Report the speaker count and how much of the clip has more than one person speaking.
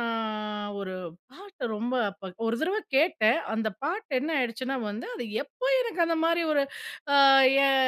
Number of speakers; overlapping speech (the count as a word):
one, no overlap